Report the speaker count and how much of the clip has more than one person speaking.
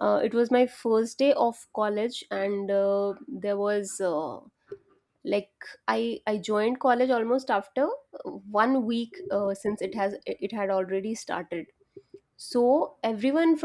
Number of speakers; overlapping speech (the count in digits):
1, no overlap